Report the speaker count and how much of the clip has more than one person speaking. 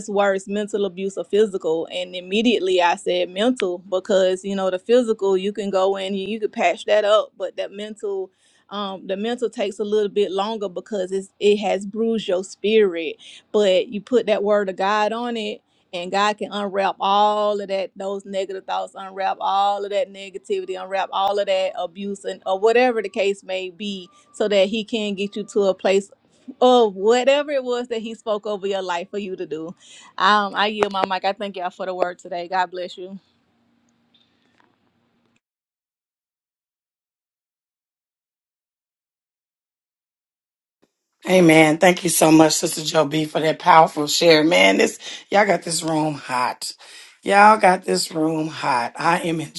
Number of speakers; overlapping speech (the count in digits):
2, no overlap